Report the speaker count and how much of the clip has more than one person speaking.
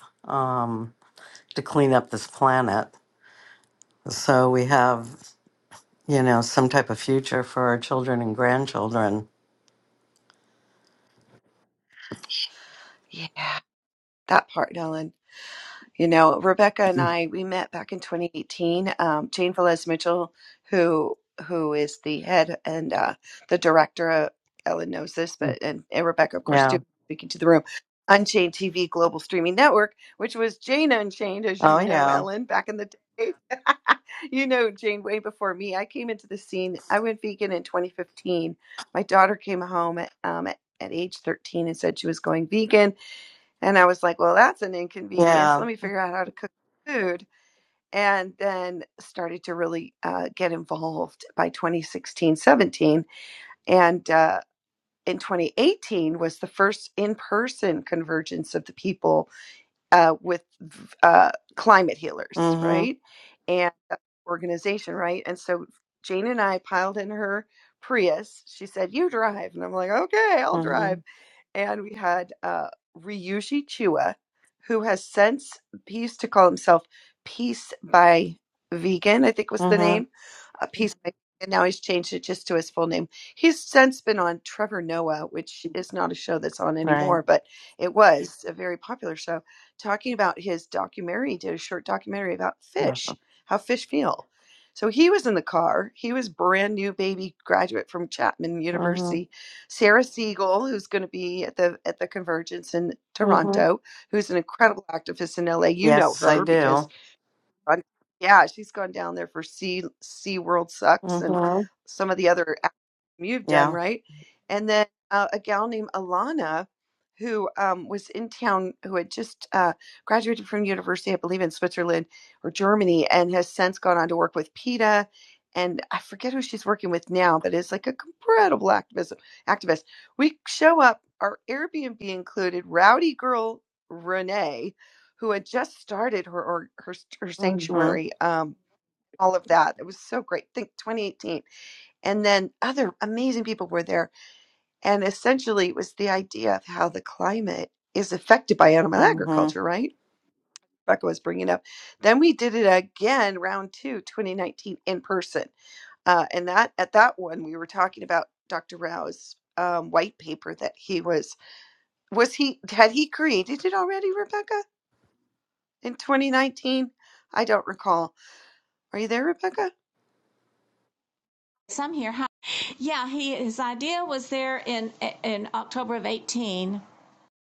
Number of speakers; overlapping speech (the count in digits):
3, about 4%